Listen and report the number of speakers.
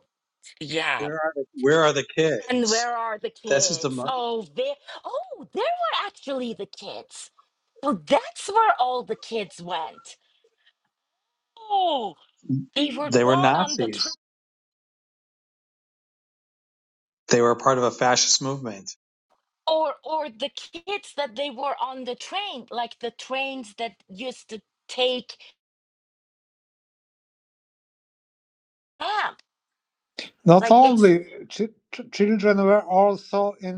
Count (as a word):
three